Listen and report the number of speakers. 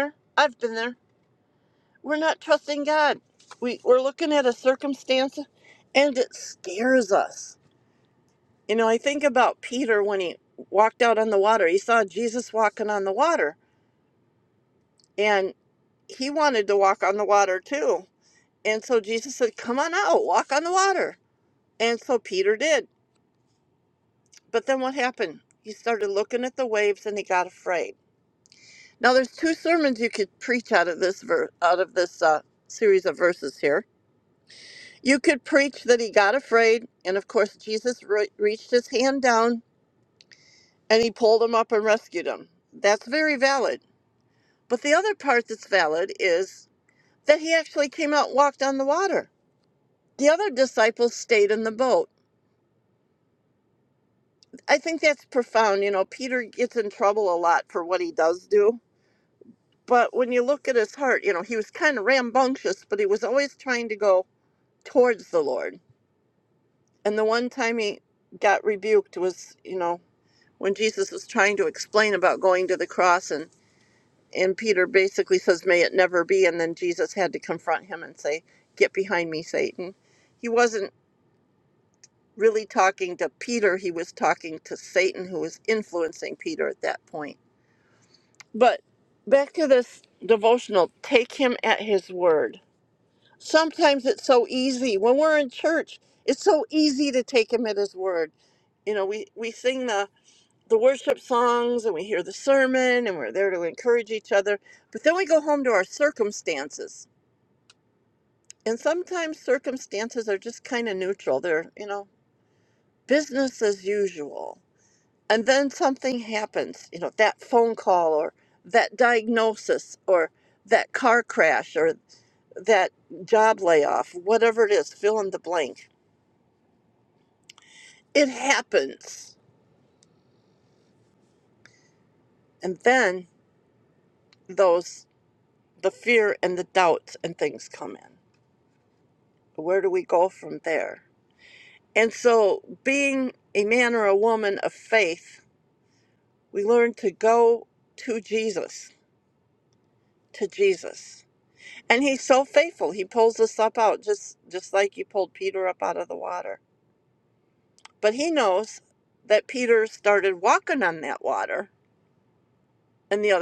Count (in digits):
1